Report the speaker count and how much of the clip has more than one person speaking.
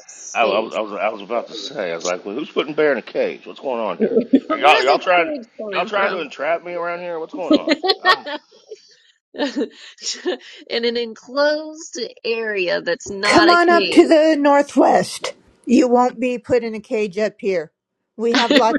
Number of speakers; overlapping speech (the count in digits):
3, about 15%